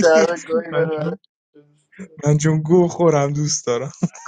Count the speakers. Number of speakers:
two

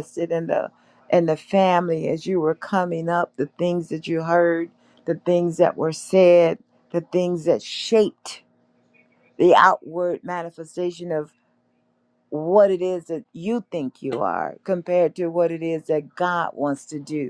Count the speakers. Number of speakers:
one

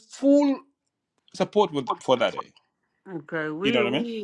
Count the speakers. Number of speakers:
two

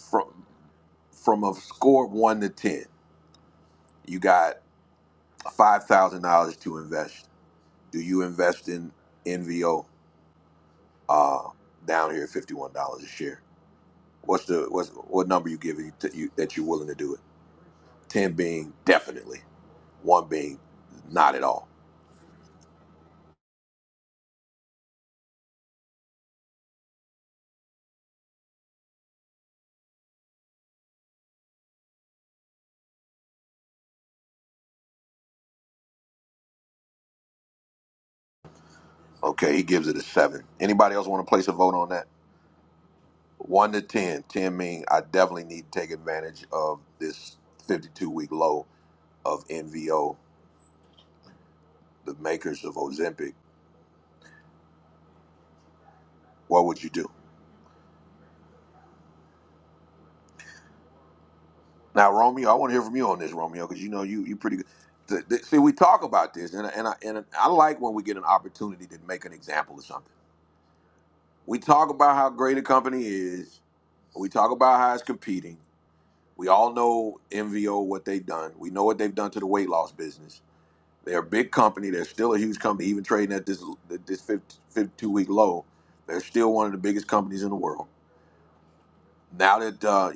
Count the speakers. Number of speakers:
one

